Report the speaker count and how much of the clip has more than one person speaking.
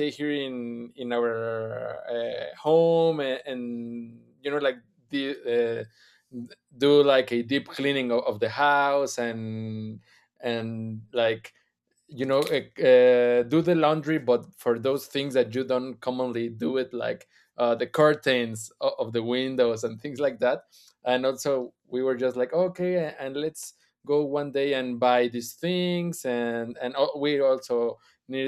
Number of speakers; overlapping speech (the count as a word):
one, no overlap